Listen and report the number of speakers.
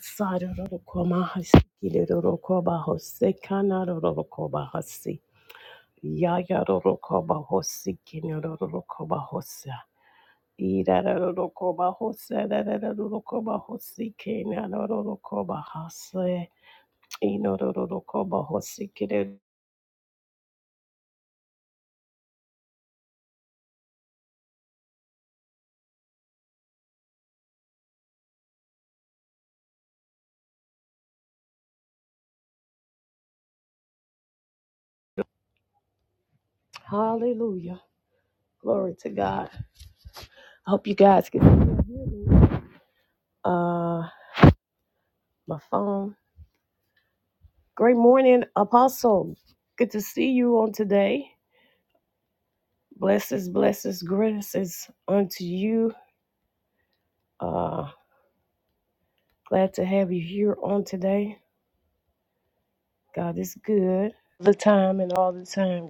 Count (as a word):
one